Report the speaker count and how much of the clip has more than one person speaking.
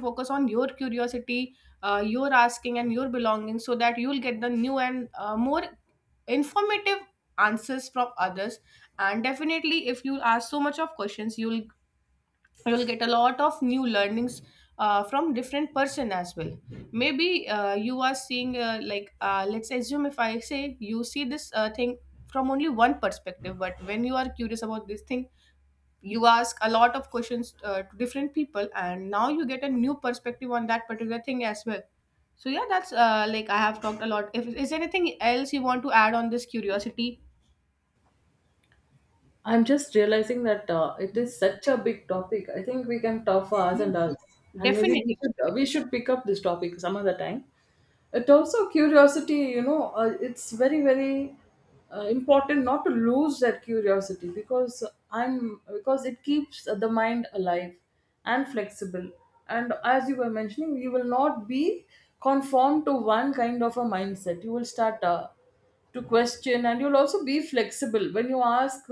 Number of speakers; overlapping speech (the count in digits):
2, about 2%